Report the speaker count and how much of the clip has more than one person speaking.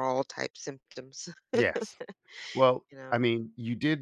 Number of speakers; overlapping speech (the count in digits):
2, about 6%